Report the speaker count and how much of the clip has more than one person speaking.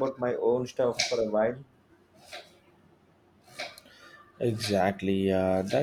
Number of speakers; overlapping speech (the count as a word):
two, no overlap